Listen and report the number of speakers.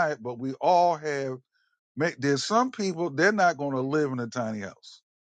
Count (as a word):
one